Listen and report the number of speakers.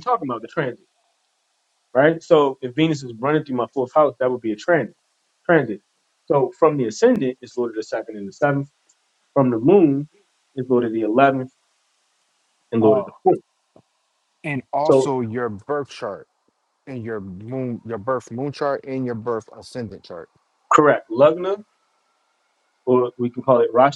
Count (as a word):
two